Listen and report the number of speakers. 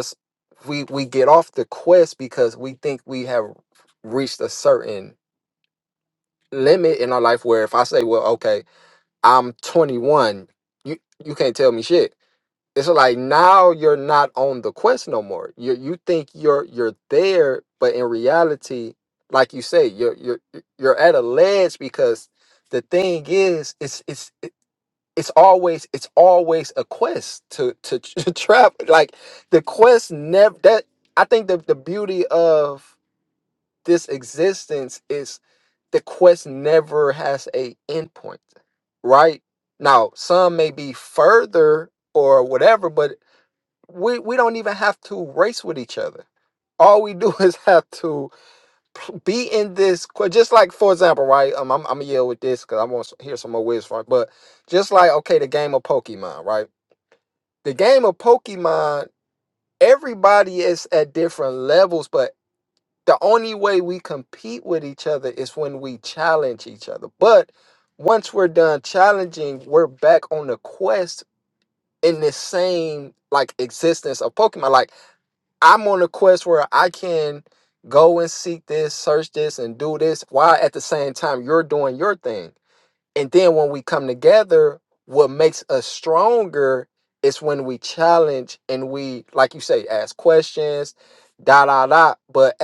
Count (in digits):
1